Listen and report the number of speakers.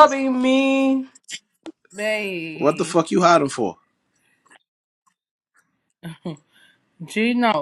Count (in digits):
3